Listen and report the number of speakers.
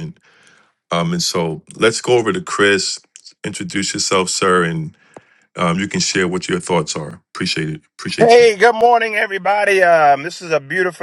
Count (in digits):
2